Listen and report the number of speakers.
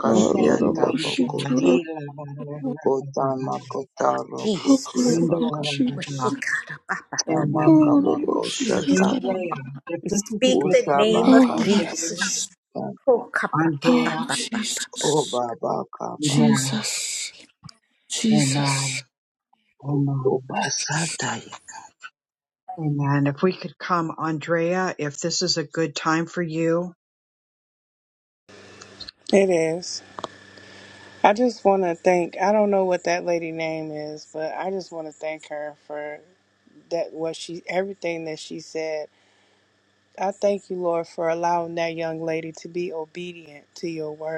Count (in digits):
5